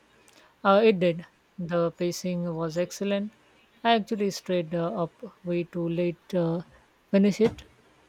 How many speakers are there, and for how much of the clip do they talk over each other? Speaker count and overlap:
1, no overlap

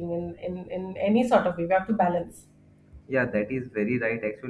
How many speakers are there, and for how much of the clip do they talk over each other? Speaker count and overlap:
2, no overlap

